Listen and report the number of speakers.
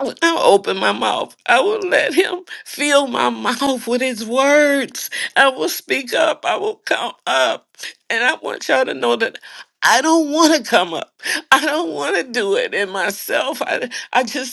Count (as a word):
one